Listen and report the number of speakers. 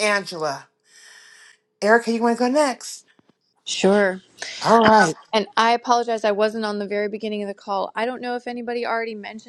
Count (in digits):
2